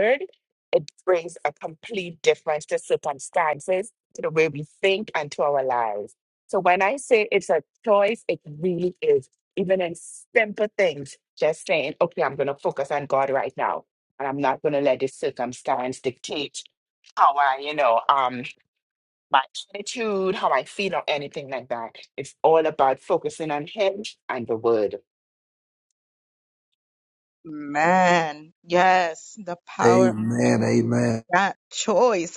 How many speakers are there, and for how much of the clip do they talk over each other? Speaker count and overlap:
three, about 1%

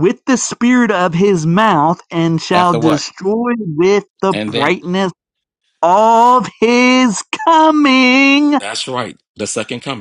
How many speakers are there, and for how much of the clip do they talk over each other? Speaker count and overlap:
two, about 9%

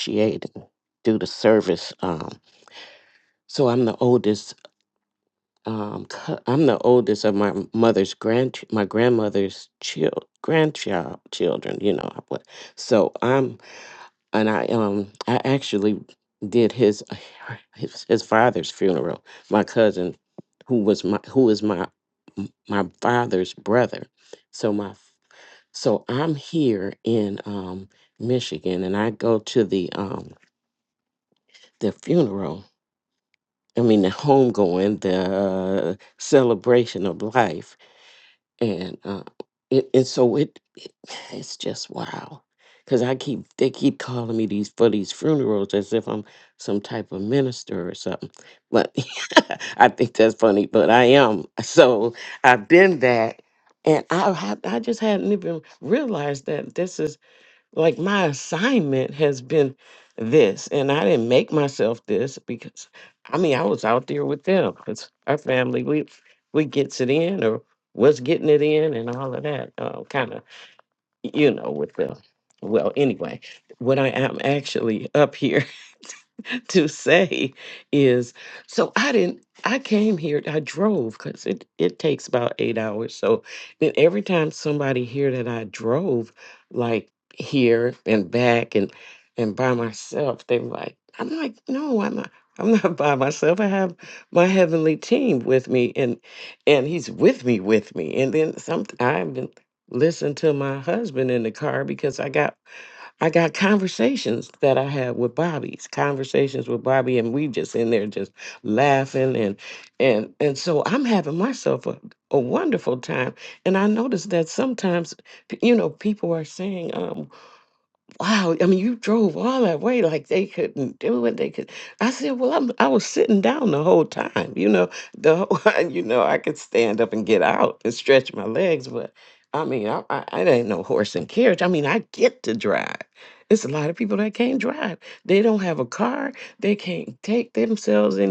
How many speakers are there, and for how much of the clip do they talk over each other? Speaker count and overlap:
one, no overlap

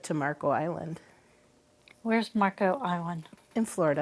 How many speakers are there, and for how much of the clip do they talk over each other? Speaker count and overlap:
two, no overlap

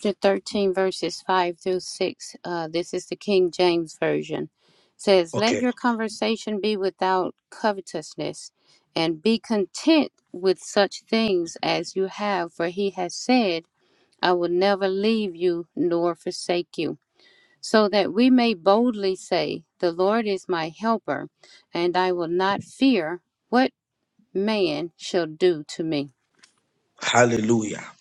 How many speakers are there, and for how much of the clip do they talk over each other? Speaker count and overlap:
two, about 1%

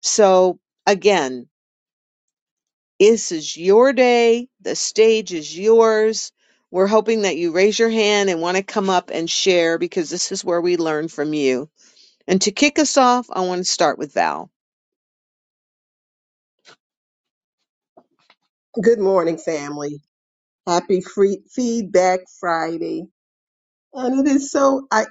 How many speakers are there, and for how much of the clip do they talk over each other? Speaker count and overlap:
two, no overlap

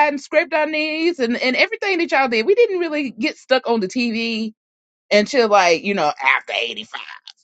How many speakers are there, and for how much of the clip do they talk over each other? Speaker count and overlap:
one, no overlap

